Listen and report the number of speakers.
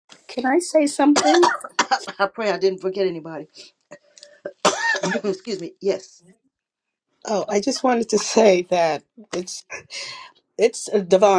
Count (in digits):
2